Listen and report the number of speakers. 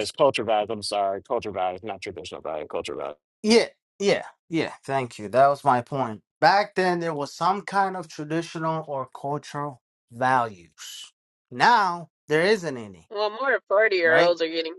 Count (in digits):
3